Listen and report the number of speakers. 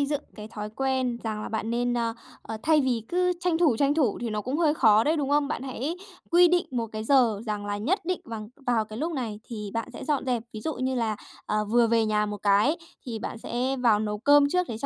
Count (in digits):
1